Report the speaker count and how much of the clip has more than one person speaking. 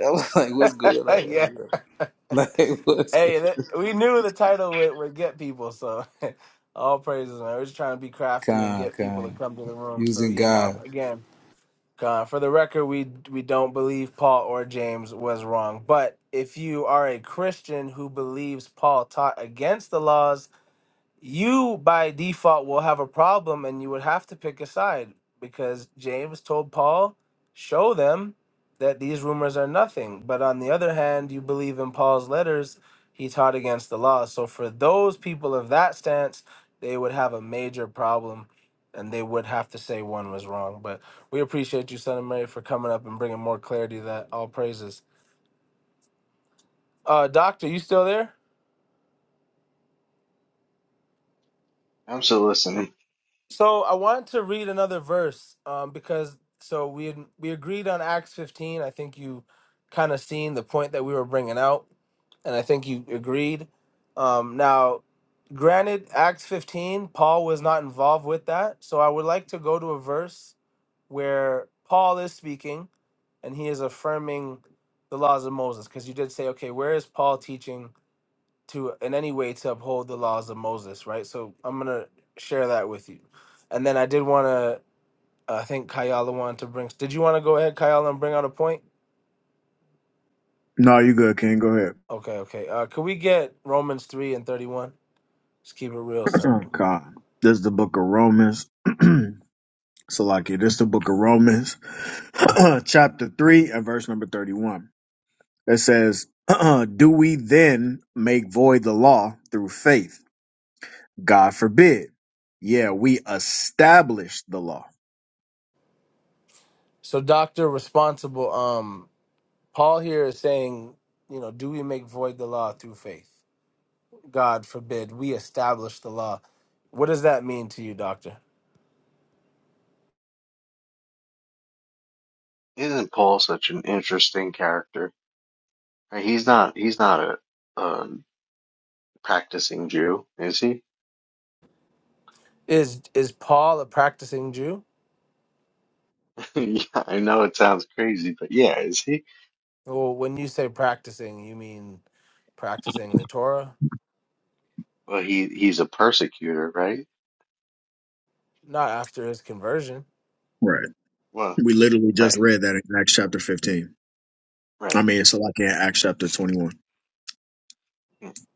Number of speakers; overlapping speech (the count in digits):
4, about 2%